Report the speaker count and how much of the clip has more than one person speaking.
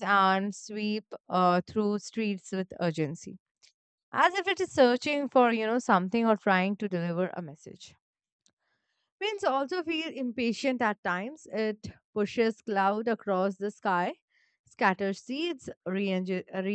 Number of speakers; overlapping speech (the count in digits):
1, no overlap